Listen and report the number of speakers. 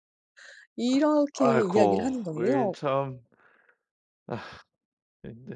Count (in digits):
2